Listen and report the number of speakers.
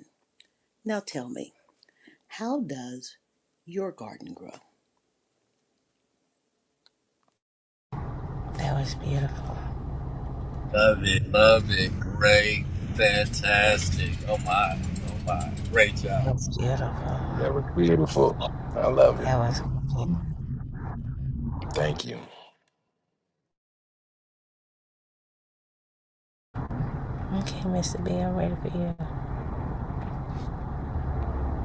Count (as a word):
four